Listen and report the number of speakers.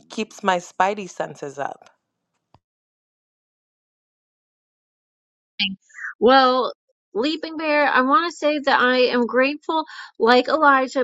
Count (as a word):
two